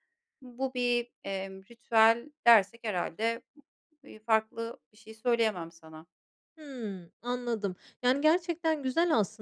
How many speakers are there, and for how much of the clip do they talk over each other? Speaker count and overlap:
two, no overlap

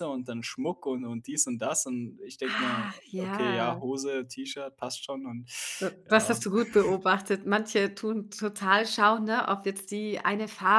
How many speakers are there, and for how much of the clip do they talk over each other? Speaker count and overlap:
two, about 16%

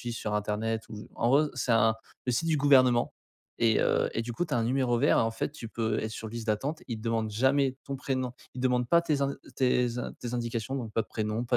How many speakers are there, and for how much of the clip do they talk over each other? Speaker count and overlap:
one, no overlap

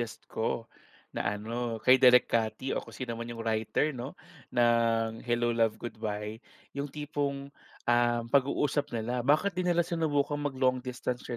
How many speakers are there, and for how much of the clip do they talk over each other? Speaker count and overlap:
one, no overlap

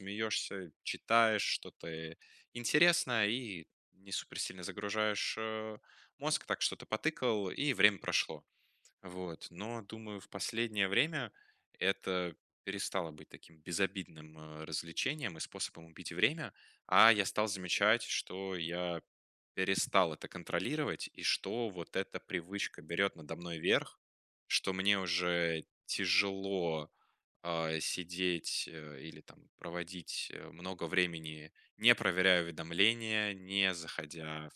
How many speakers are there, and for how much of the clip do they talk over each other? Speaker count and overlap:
one, no overlap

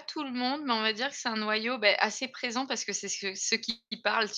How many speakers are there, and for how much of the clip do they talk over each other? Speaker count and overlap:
one, no overlap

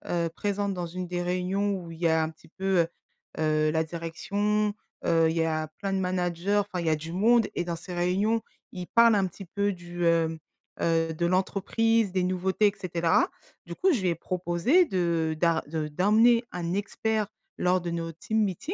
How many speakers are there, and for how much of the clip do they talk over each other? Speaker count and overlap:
one, no overlap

